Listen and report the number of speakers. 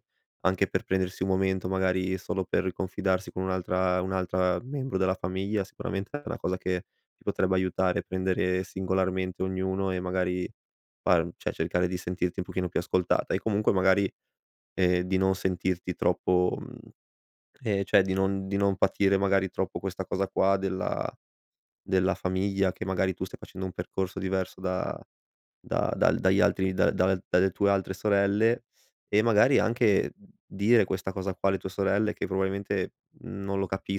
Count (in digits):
1